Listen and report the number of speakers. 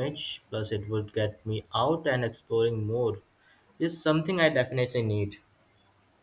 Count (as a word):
one